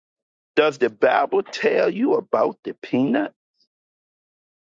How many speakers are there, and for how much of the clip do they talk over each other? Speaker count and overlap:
1, no overlap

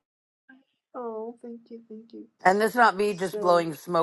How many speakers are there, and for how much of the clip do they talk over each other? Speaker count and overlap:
2, about 8%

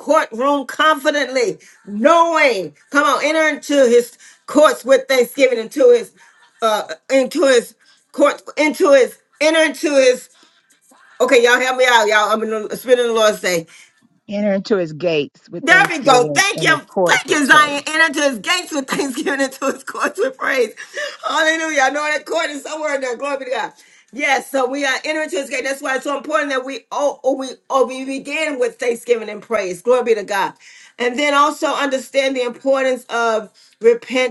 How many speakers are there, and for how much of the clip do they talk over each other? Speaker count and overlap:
2, about 6%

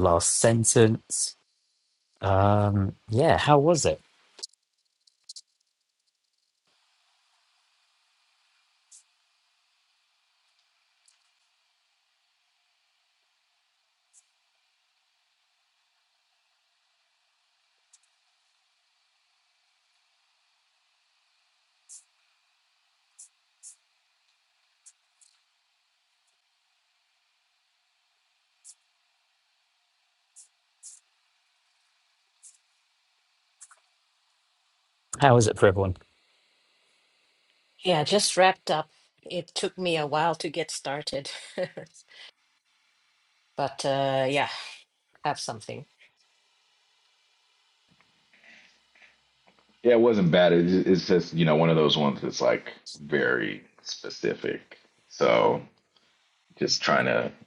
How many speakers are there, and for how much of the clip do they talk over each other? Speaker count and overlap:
3, no overlap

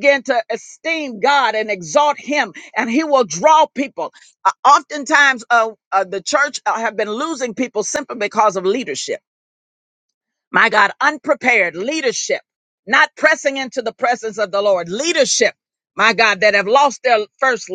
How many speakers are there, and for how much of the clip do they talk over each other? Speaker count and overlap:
1, no overlap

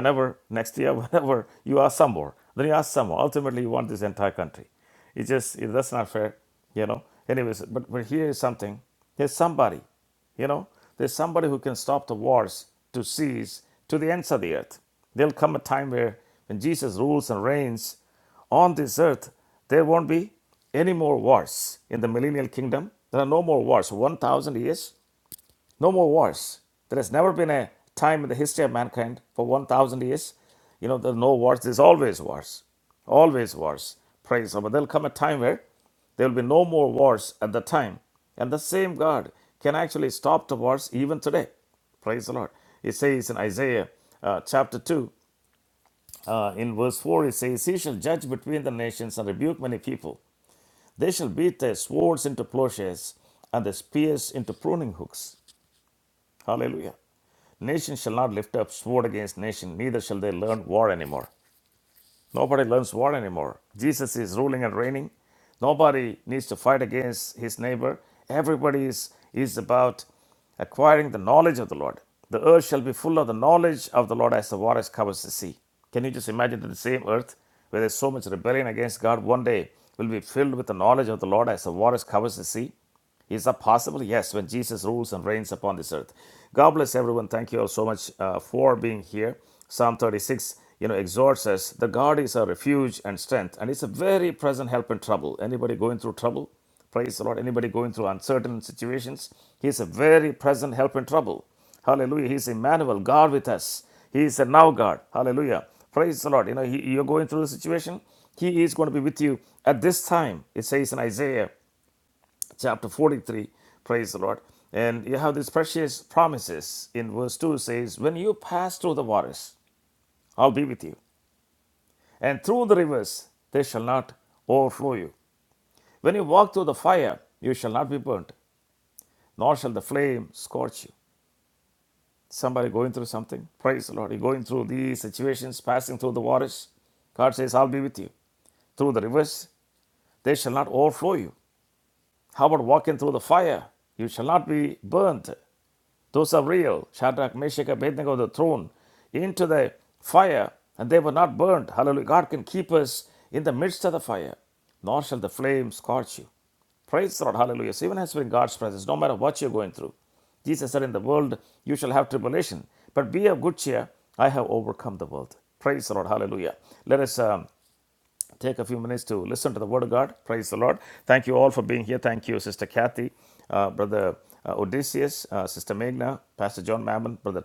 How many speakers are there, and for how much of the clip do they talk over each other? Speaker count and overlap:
1, no overlap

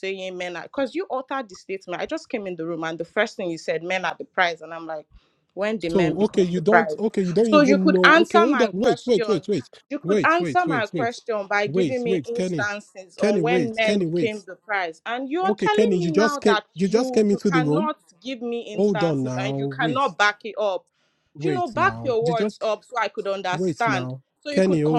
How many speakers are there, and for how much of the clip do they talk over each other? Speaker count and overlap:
2, about 48%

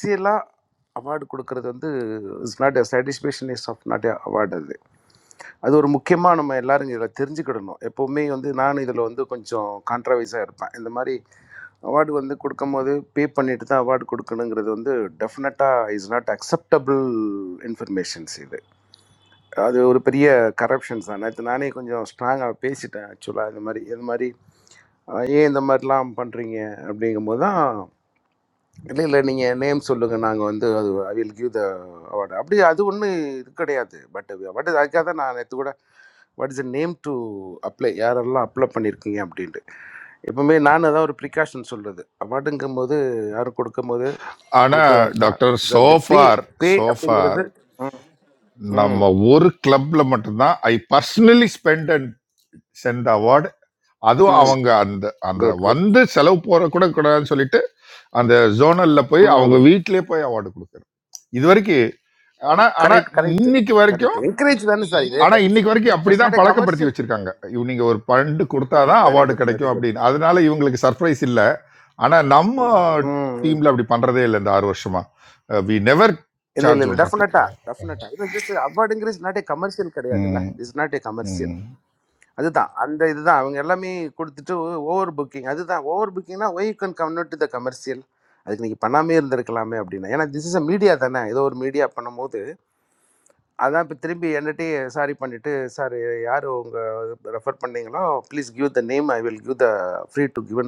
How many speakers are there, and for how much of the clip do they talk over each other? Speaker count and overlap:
2, about 7%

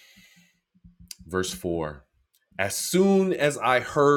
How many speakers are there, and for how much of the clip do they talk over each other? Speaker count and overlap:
1, no overlap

